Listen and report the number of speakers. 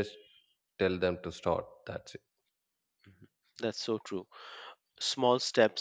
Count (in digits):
2